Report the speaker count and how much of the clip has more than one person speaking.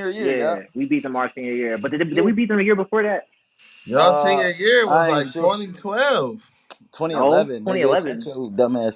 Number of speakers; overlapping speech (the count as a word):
three, about 33%